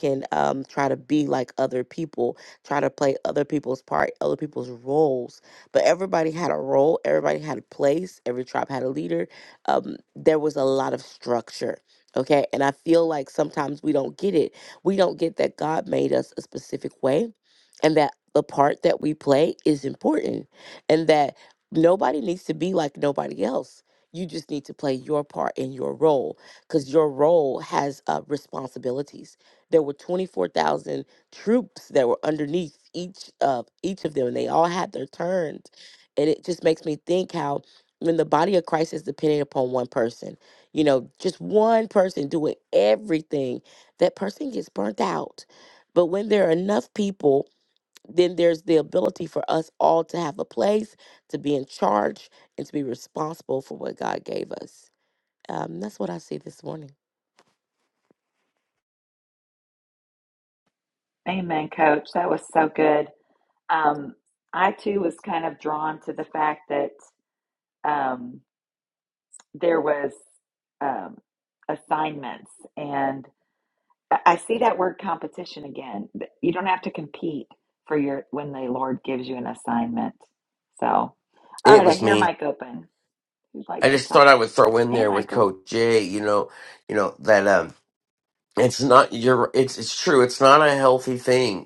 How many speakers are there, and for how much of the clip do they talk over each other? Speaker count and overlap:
3, about 2%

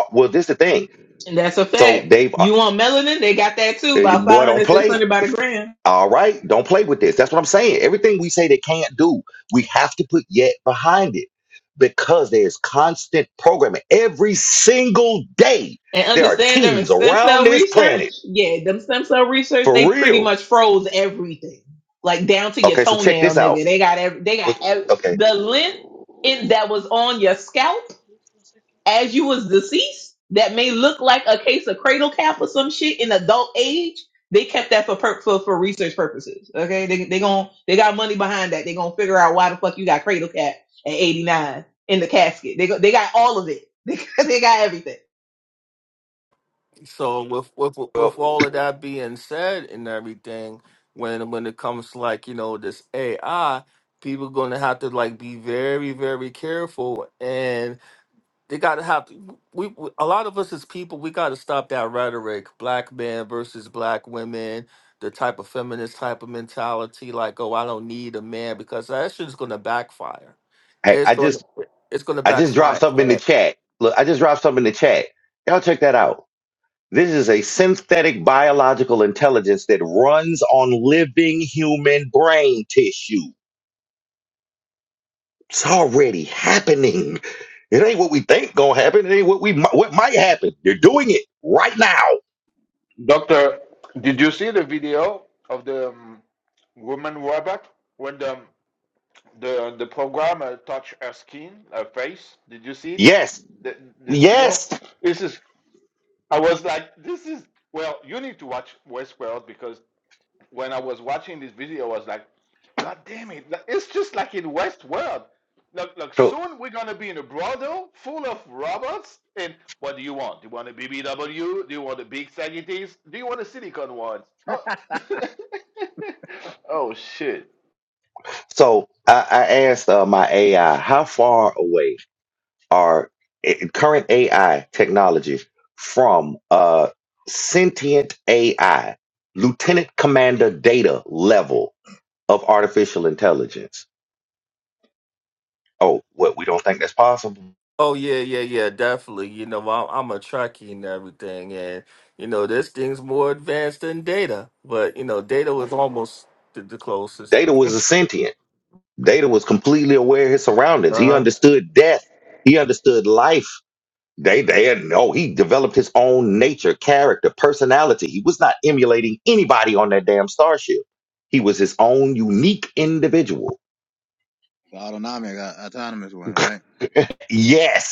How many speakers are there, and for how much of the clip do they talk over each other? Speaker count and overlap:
5, about 5%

